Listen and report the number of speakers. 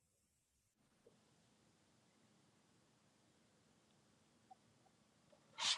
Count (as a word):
zero